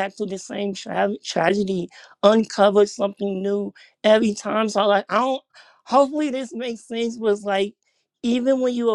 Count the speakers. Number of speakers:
one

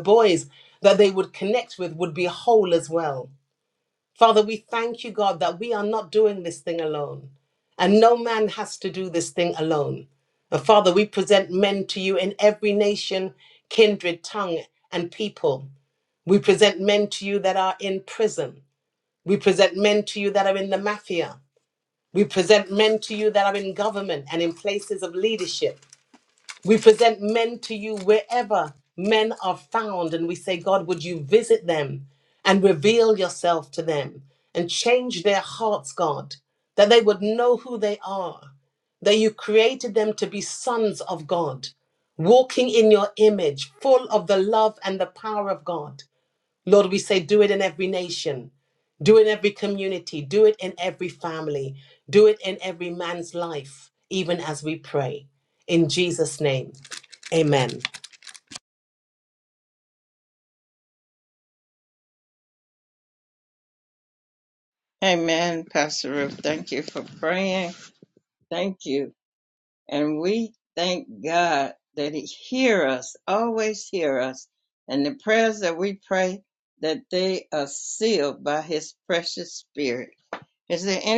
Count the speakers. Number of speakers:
two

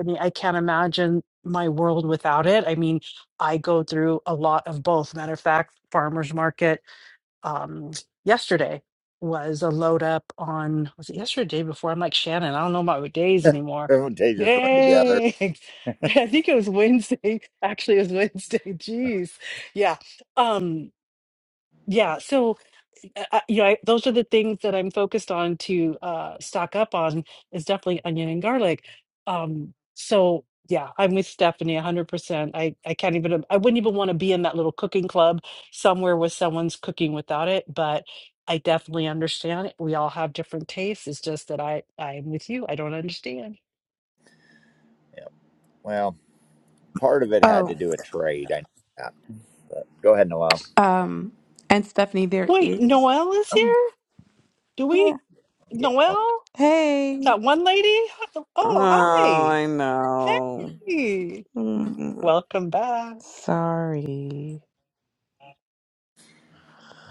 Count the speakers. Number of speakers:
three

